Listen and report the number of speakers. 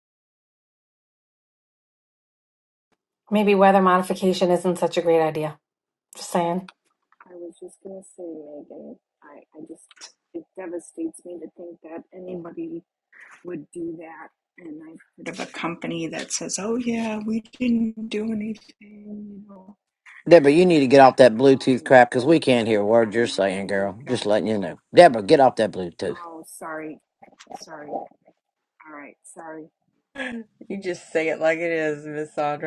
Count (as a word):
four